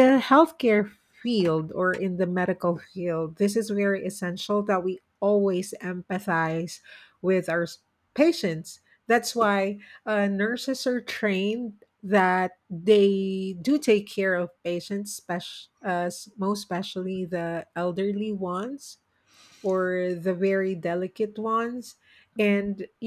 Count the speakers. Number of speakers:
one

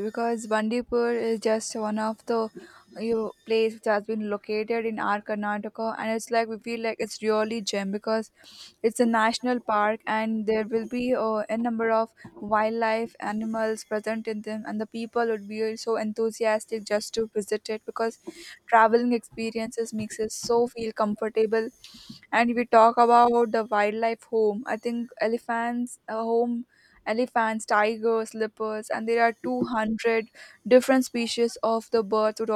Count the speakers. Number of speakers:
one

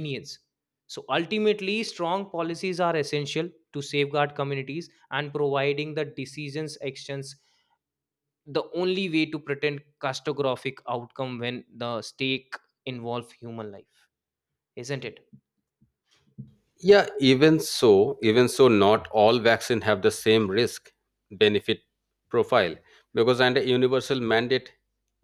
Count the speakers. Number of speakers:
two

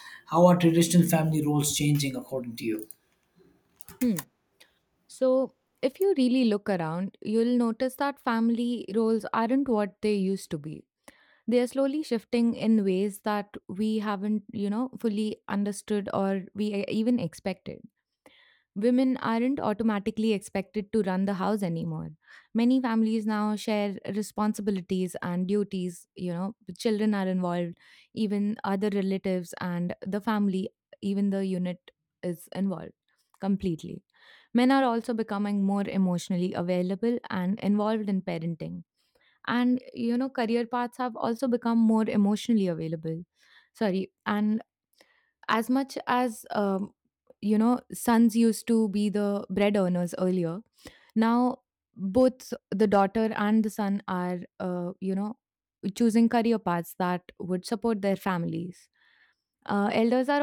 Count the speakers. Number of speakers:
two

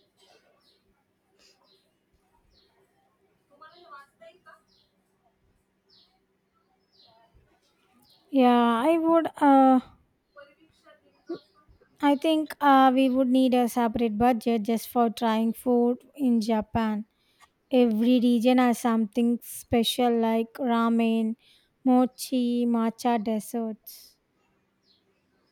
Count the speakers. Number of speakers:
one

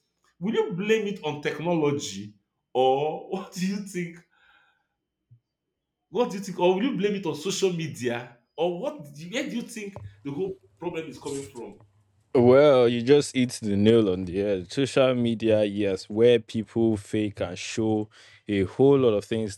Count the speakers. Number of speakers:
two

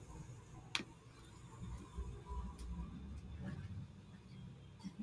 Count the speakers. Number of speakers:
zero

